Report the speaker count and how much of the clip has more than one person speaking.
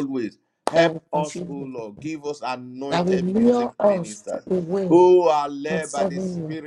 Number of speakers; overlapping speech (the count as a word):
two, about 47%